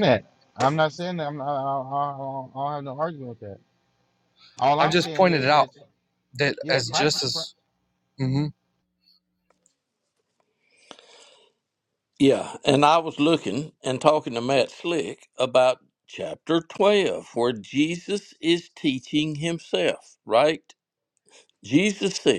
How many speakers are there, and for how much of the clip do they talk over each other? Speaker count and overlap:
three, about 6%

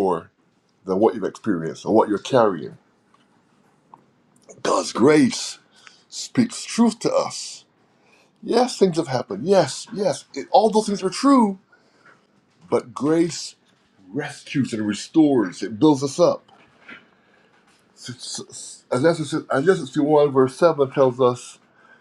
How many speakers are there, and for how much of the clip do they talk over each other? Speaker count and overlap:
one, no overlap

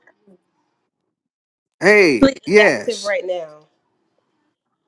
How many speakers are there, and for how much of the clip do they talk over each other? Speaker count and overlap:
two, about 17%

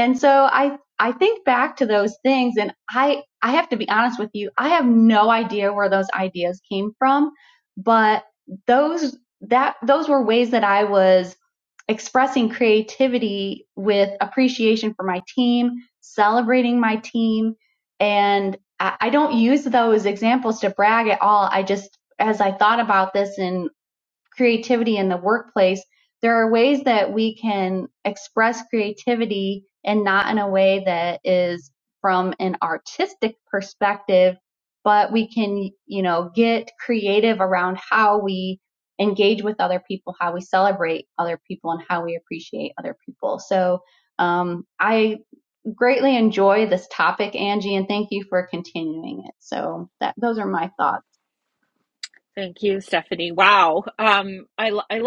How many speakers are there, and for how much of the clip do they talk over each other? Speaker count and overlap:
two, no overlap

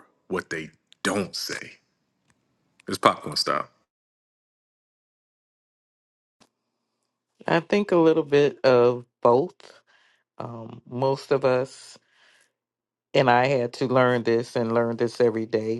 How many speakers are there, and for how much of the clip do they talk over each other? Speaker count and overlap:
two, no overlap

